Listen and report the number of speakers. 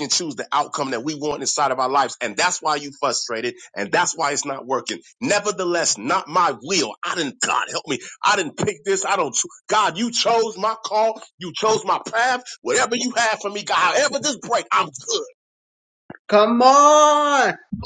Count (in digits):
2